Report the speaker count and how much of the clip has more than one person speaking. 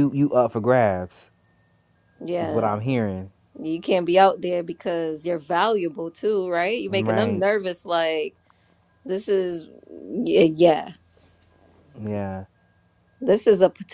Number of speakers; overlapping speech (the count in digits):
2, about 6%